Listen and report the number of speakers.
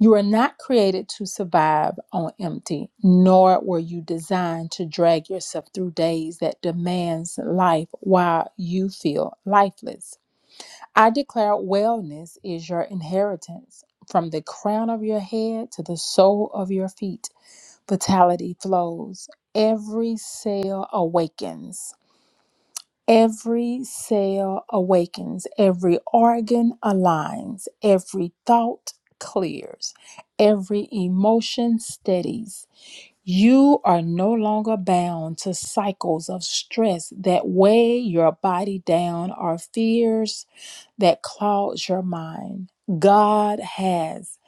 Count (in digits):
1